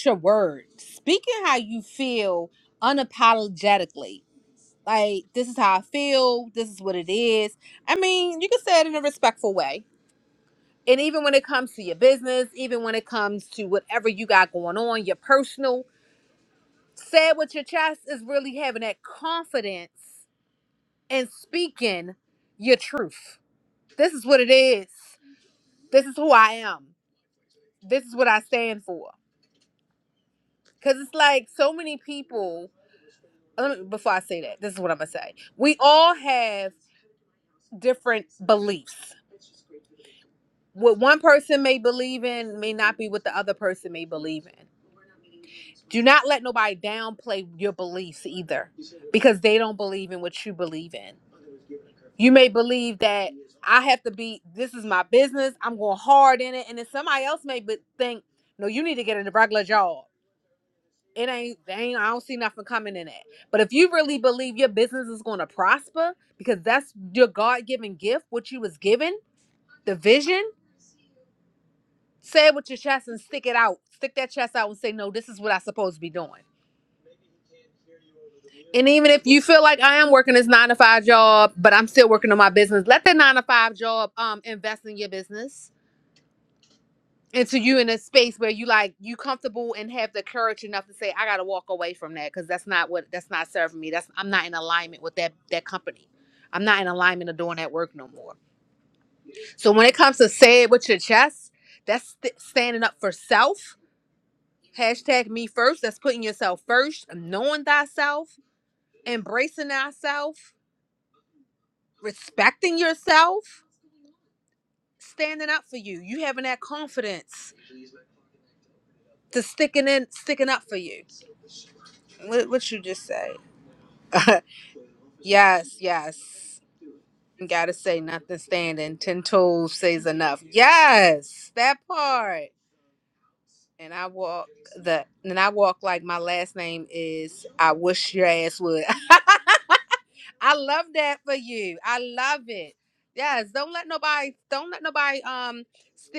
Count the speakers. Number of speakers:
1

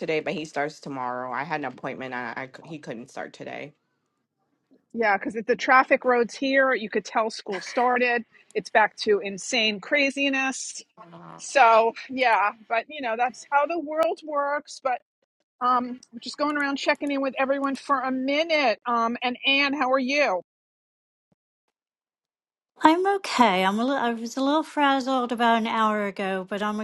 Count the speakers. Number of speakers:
3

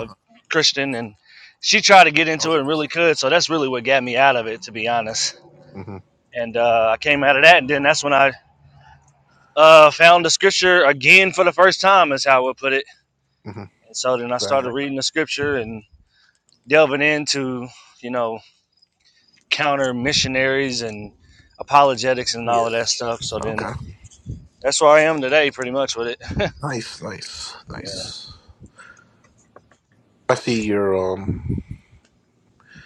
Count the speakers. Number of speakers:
2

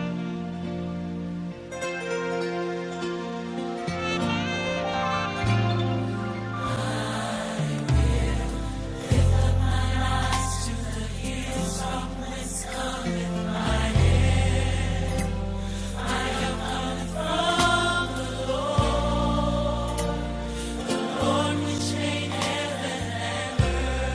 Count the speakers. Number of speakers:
0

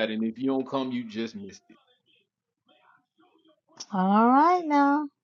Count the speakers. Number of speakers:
2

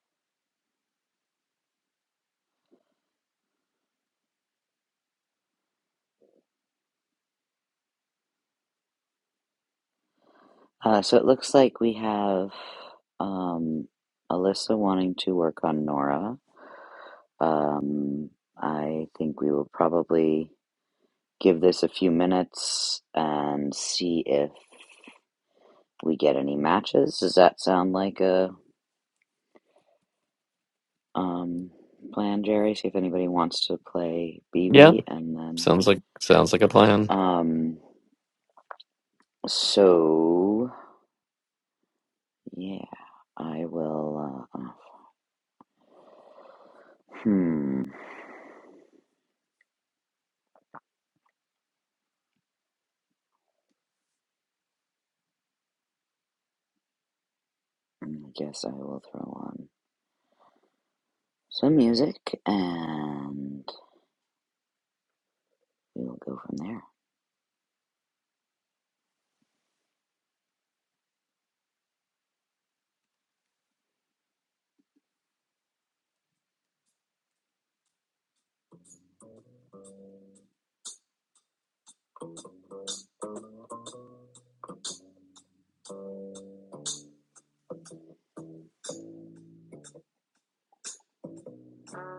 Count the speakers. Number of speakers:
2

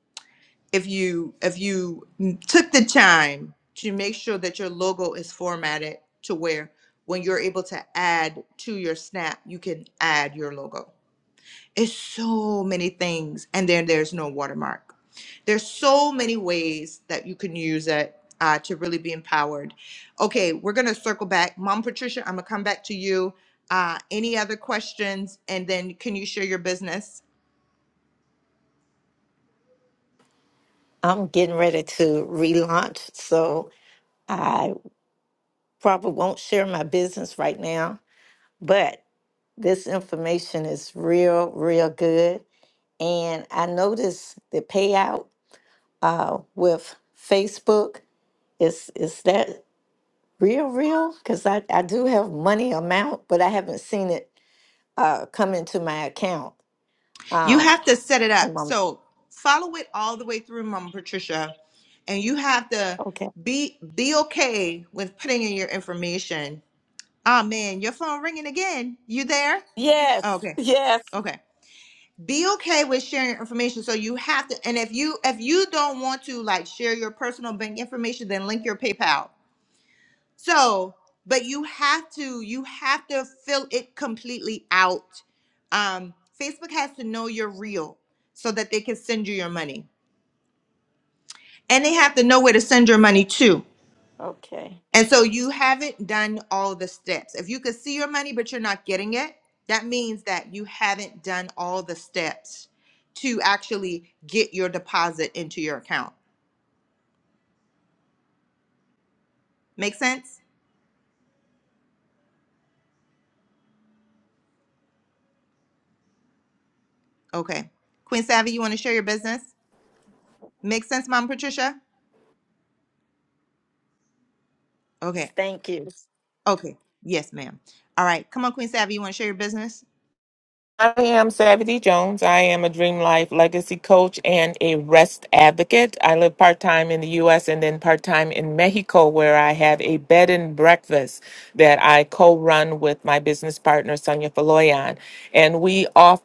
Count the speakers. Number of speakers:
3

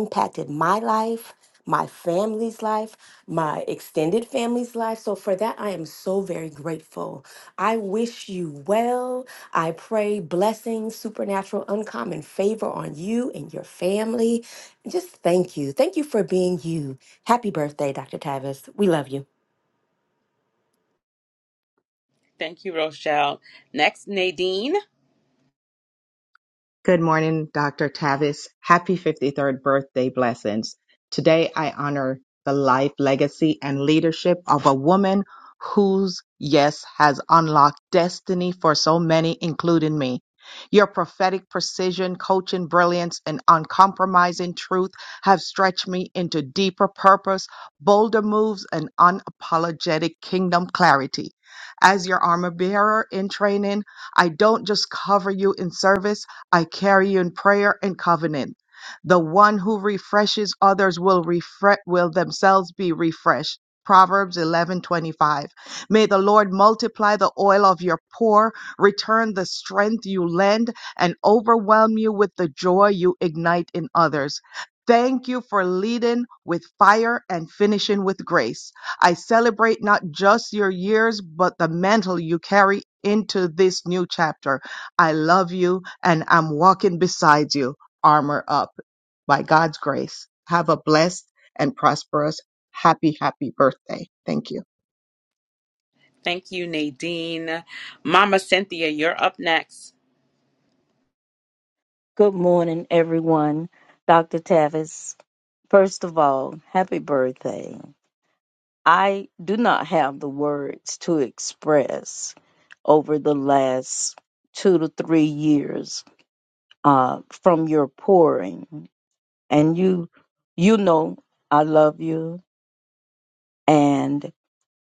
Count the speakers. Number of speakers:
4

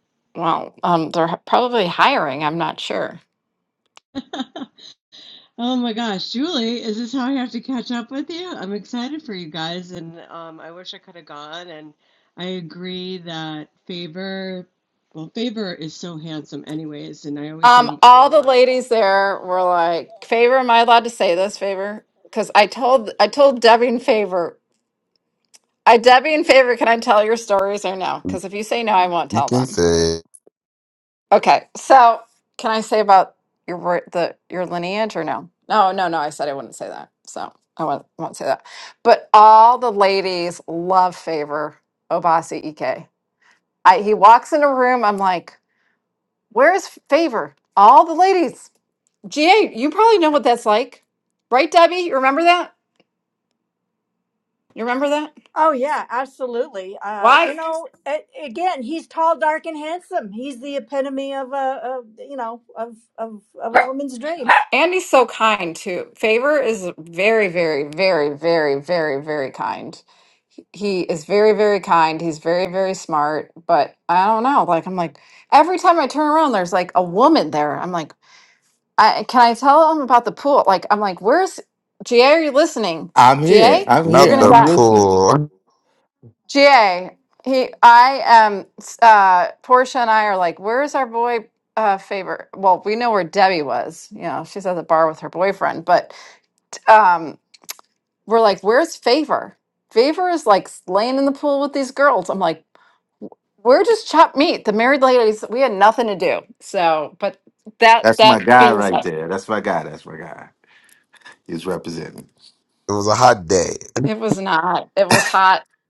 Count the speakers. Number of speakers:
5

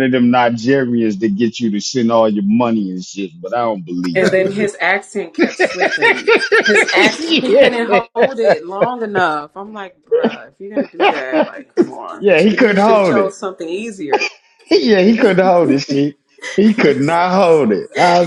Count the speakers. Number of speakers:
2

